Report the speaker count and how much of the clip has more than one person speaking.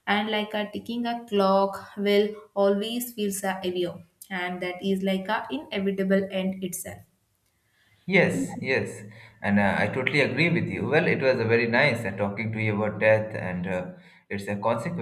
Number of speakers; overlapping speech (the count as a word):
two, no overlap